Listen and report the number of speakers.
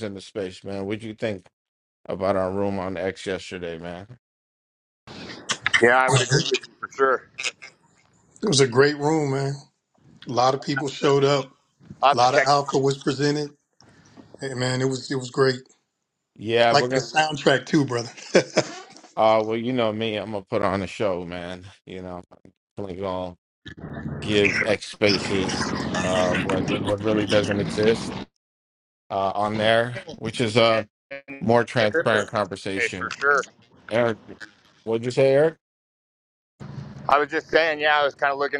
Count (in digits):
3